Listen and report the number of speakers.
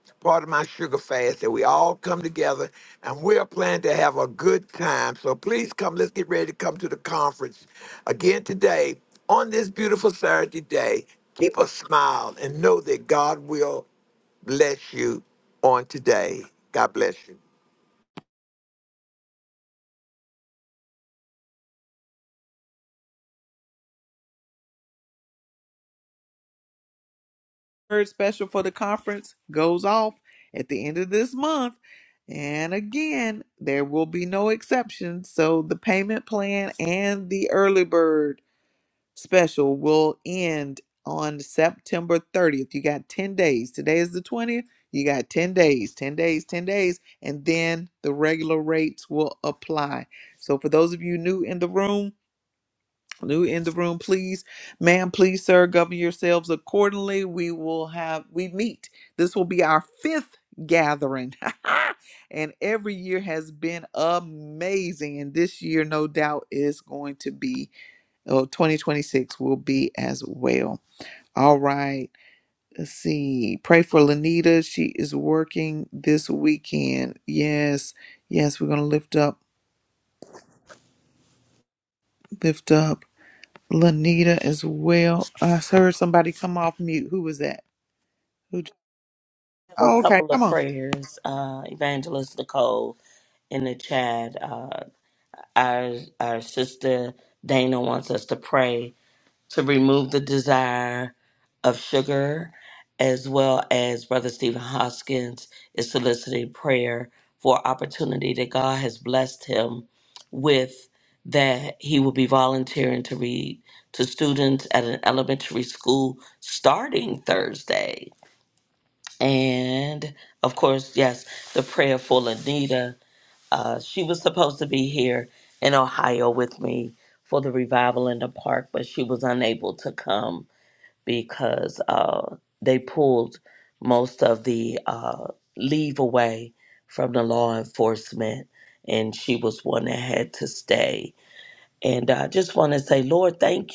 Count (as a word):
three